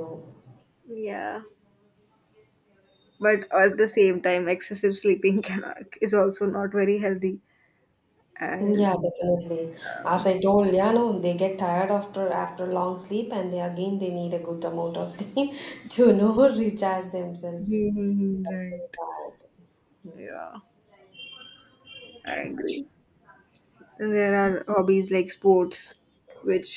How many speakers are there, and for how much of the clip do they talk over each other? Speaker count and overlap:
two, about 1%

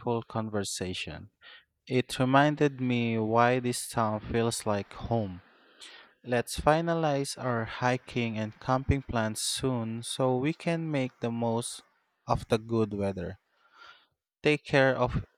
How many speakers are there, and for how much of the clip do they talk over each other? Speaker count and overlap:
one, no overlap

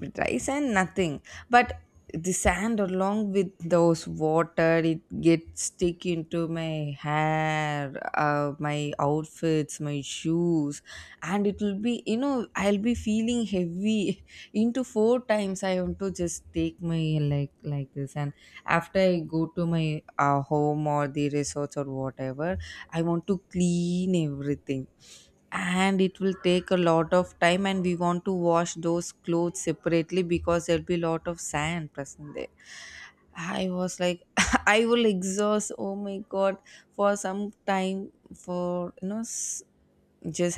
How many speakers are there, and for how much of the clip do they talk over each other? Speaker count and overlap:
one, no overlap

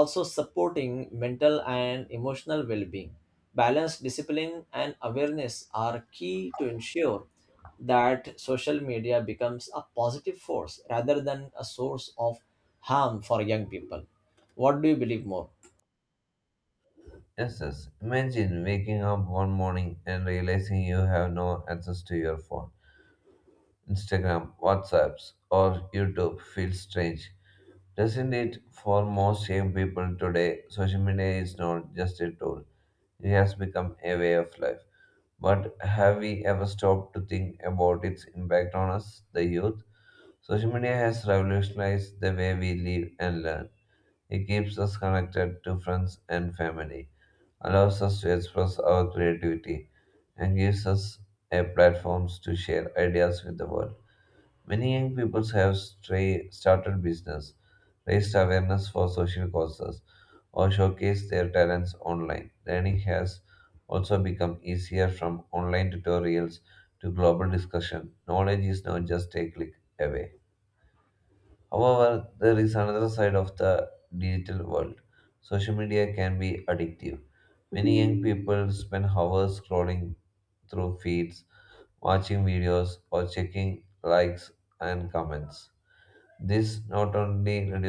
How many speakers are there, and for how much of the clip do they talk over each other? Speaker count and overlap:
two, no overlap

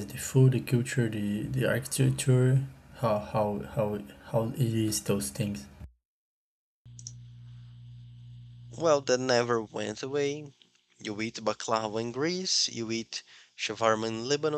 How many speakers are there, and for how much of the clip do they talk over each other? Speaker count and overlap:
two, no overlap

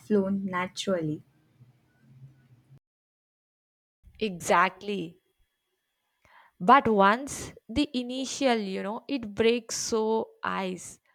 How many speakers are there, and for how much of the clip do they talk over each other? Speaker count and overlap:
two, no overlap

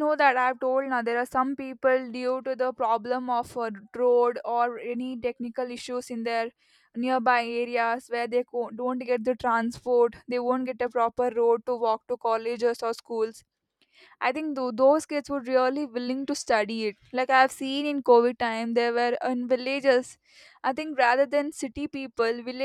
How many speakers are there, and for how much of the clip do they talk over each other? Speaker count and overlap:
one, no overlap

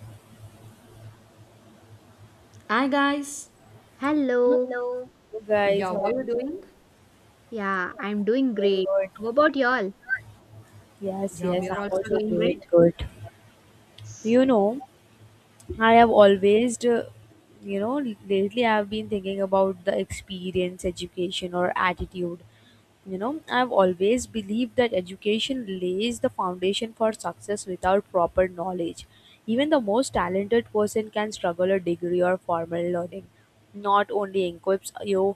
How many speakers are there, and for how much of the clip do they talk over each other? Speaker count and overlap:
three, about 6%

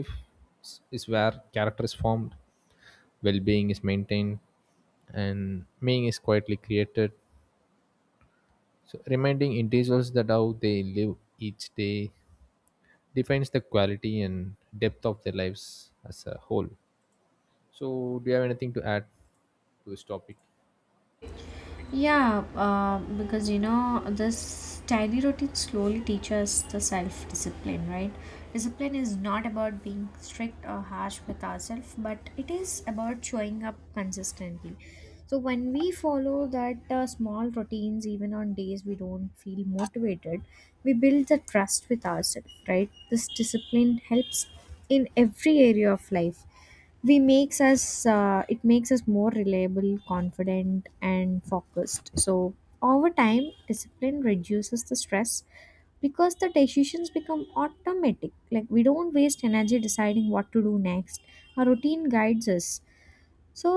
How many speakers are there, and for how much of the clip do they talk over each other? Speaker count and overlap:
two, no overlap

